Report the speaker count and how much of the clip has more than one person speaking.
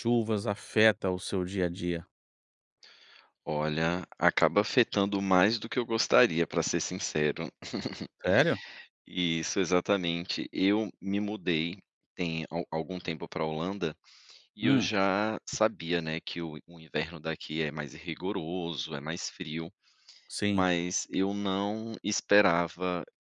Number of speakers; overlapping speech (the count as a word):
two, about 1%